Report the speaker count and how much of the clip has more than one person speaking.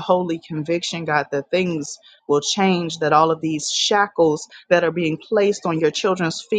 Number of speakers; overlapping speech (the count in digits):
1, no overlap